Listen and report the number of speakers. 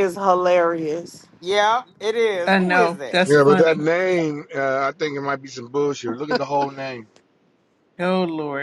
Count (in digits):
4